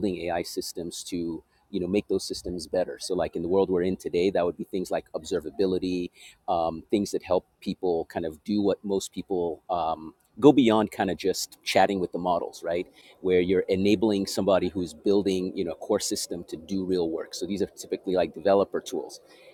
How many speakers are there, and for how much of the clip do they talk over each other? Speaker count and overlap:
one, no overlap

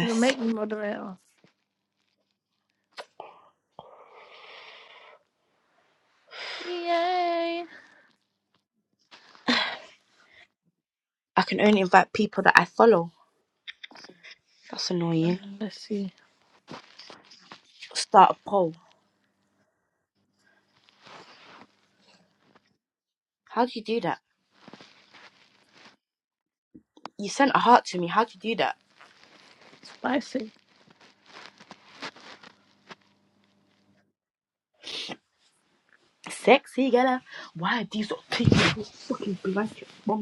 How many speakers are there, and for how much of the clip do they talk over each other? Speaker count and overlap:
two, about 1%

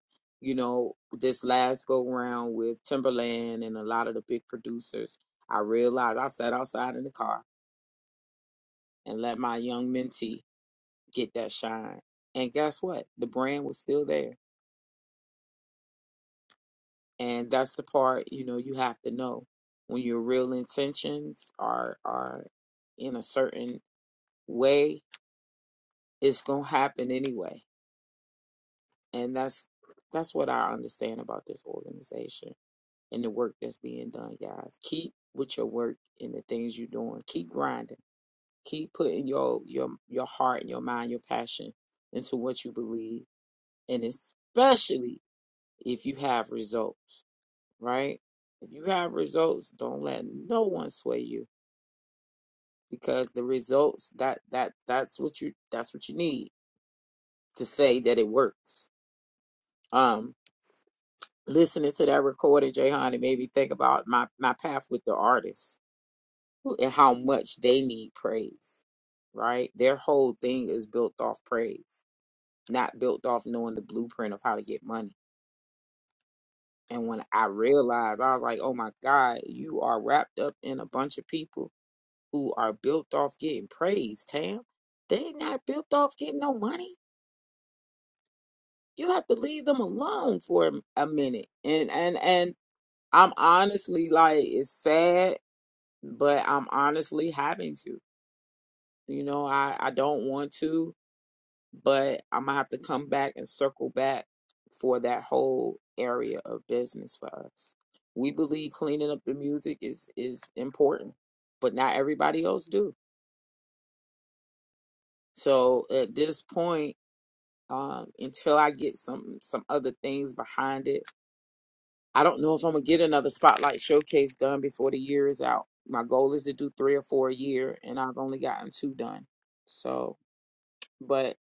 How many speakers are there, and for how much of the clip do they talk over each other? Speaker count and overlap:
one, no overlap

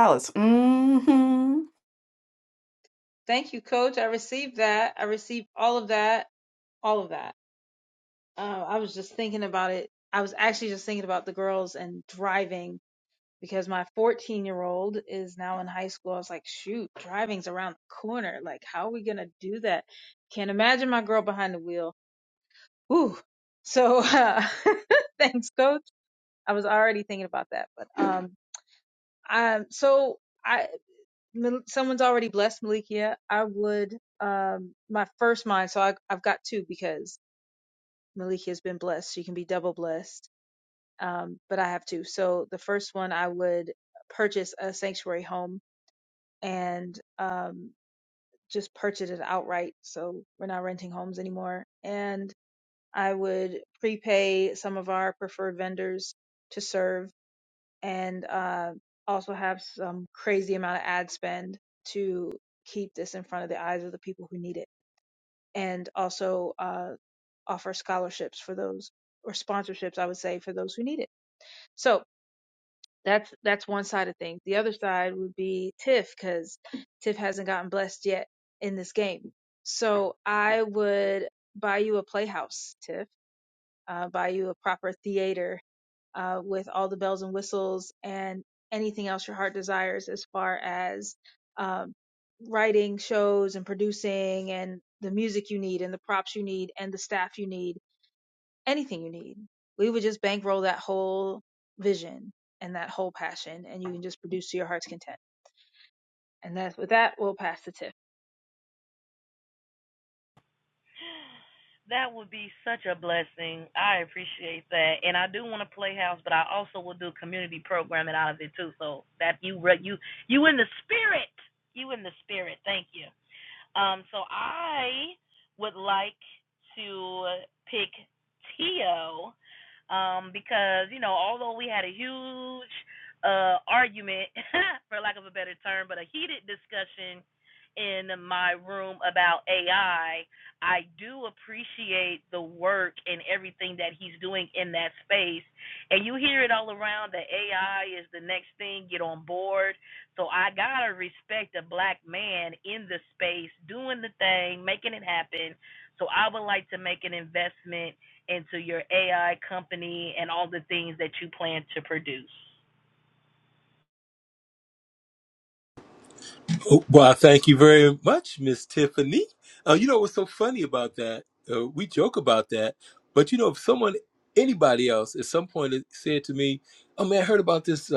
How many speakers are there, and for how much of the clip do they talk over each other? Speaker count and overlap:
four, no overlap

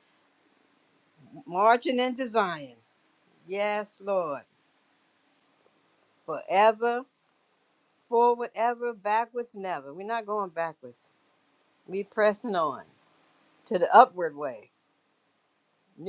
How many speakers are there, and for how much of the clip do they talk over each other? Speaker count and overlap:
one, no overlap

